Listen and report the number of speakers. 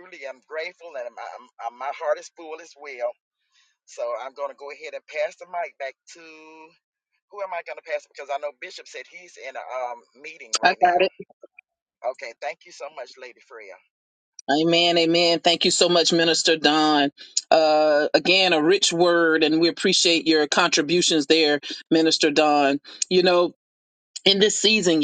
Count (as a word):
two